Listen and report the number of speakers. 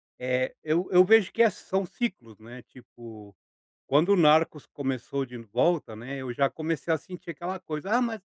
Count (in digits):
1